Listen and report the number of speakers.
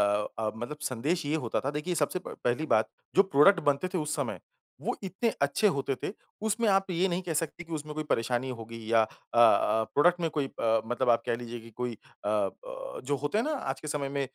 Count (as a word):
one